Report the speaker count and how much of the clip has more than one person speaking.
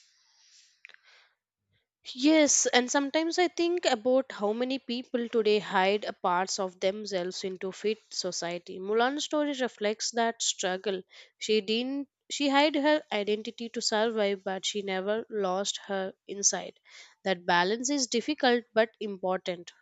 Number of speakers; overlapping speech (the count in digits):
1, no overlap